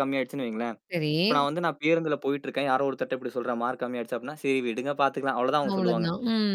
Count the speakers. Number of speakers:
two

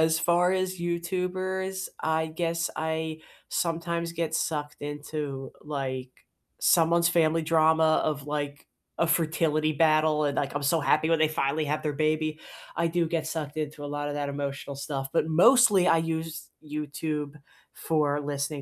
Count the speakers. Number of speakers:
one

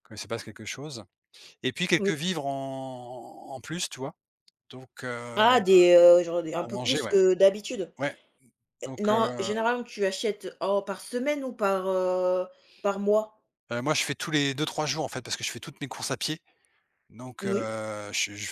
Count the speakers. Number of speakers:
two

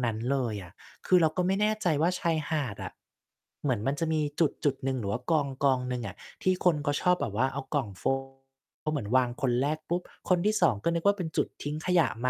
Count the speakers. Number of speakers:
one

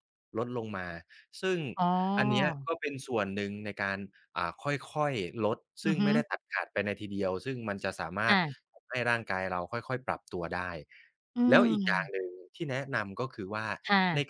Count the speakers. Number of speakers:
two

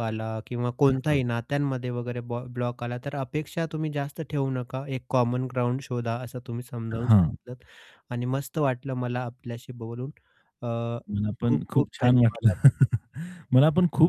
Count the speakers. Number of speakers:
two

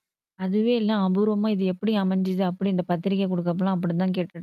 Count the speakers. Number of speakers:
one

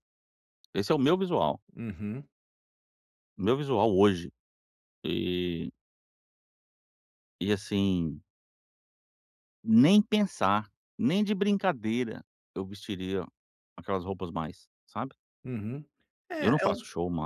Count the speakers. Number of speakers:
two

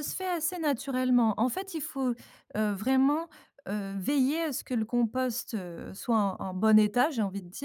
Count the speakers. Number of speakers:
one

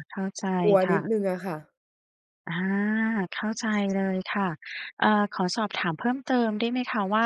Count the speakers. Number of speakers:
two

